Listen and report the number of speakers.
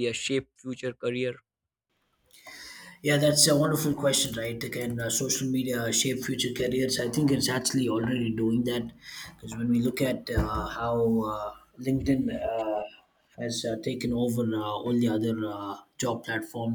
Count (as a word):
two